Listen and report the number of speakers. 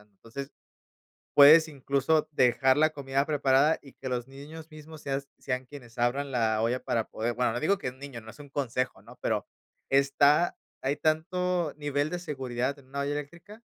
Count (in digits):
1